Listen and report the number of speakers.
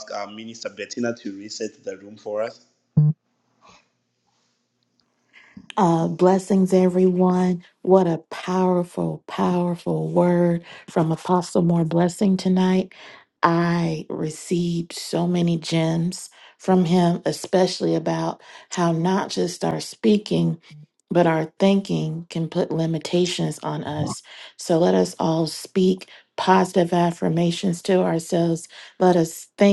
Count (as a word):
two